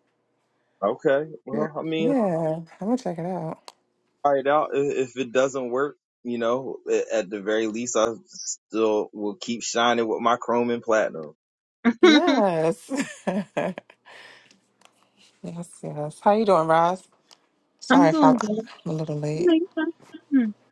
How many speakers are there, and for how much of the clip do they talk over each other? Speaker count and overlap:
three, about 6%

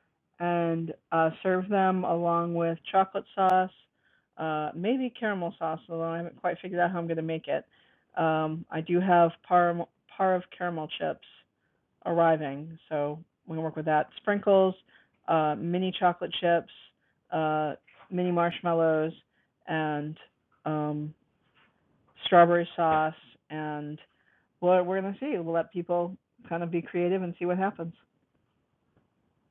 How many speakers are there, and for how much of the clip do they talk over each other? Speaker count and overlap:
one, no overlap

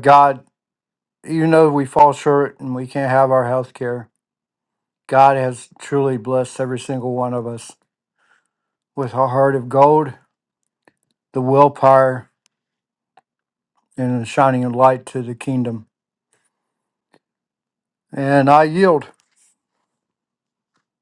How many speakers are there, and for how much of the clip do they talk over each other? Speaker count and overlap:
one, no overlap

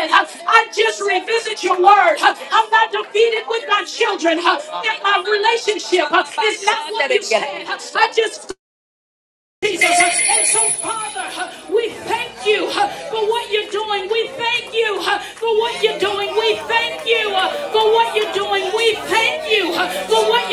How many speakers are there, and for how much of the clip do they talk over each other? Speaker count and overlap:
two, no overlap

